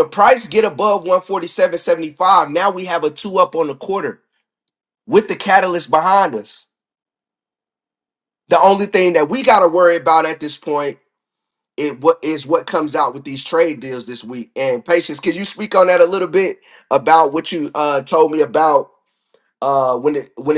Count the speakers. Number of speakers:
1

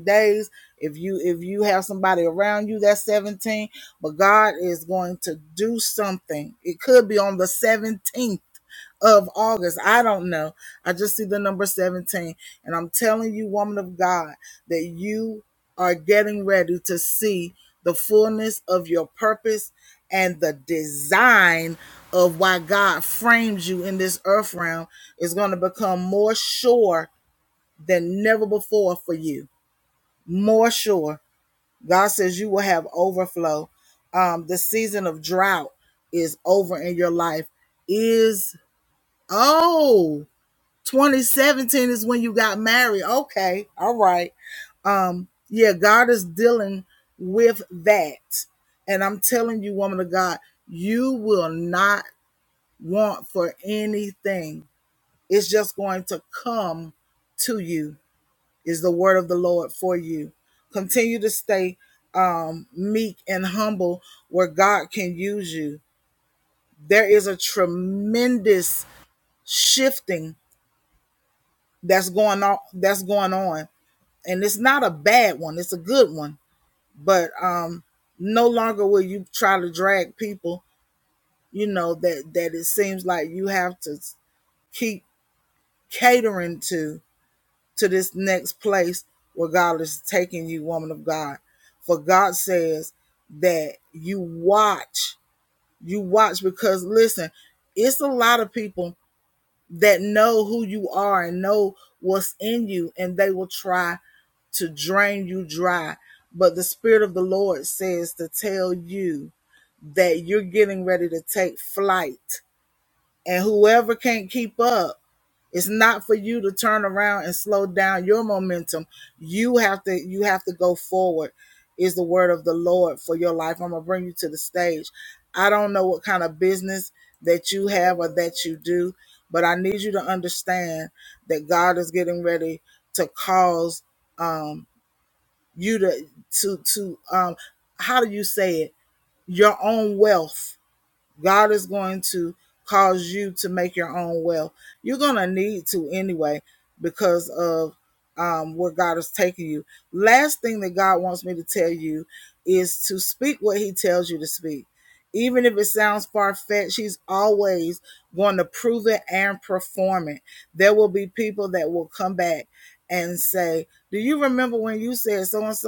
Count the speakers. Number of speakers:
1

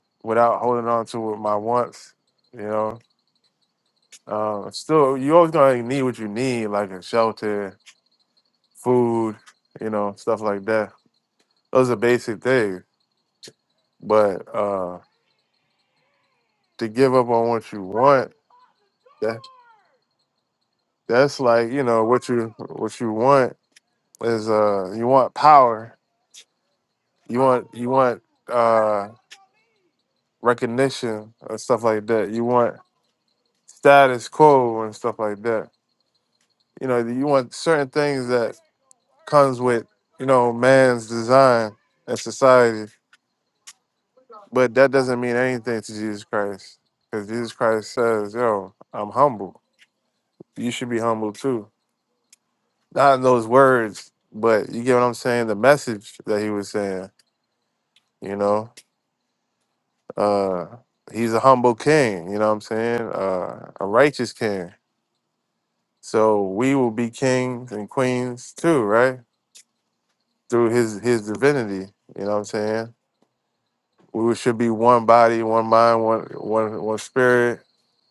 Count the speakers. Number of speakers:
1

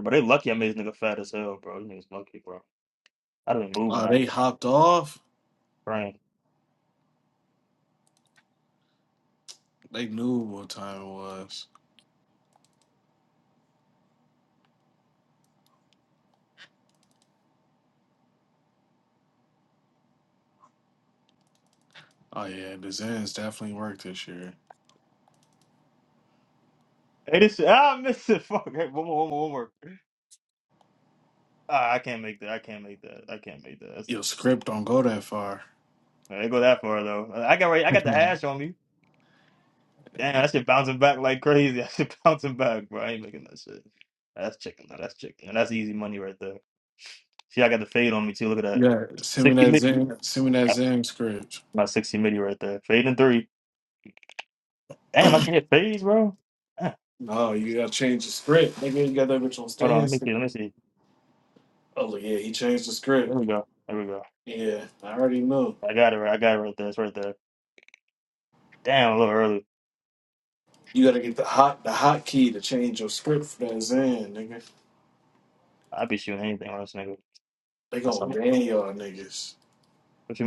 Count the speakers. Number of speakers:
2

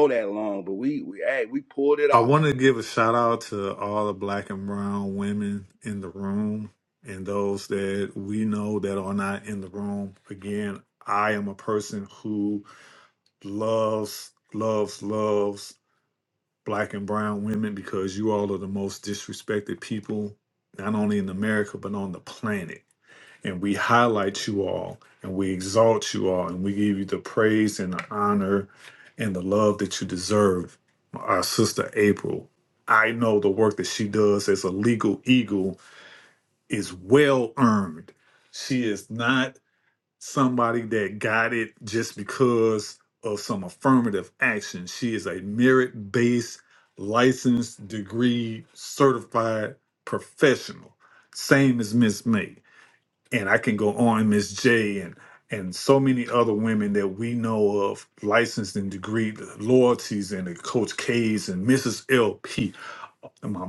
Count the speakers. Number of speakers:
2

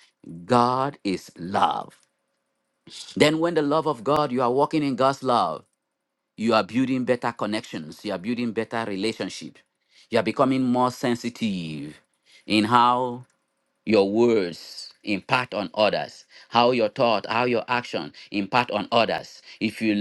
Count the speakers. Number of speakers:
1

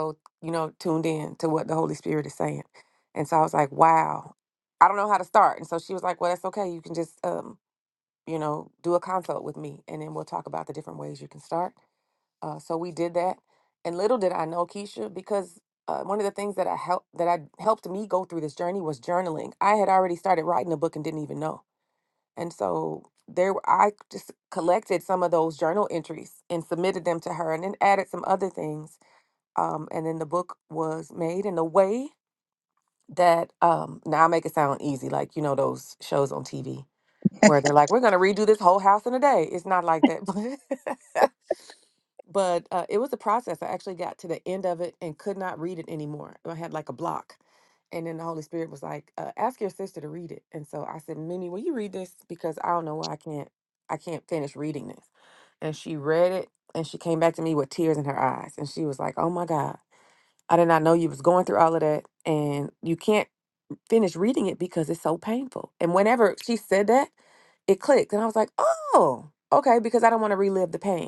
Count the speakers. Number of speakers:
1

